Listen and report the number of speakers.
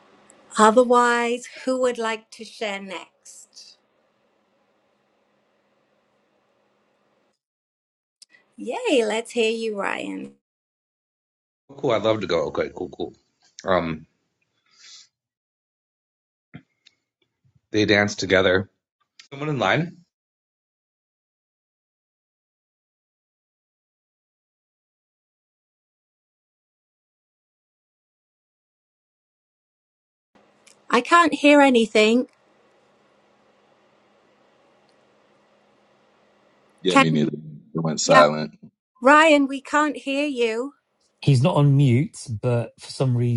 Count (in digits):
4